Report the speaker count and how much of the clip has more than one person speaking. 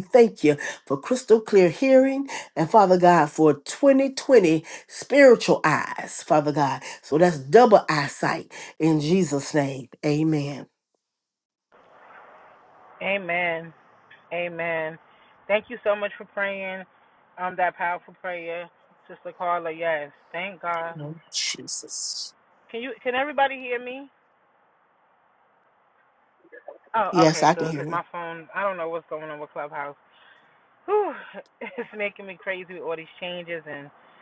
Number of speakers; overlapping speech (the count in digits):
2, about 3%